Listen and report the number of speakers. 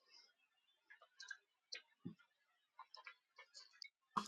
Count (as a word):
zero